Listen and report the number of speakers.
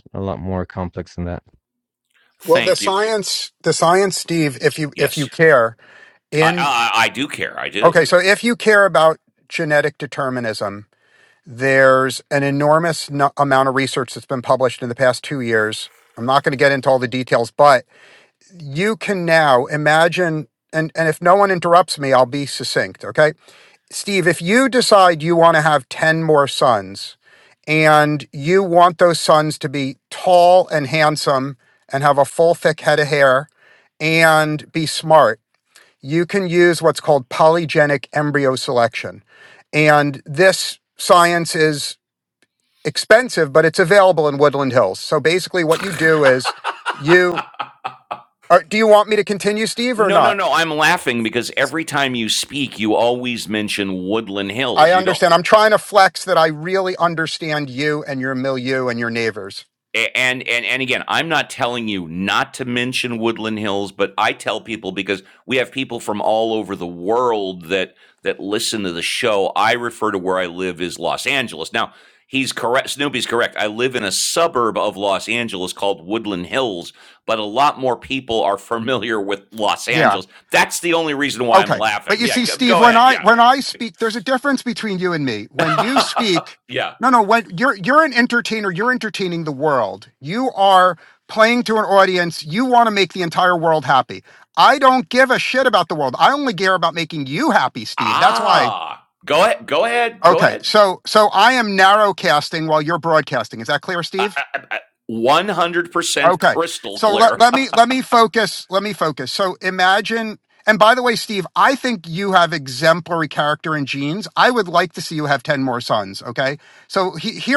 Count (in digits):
3